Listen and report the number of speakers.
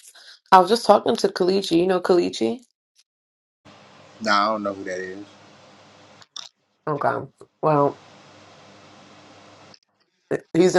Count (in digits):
2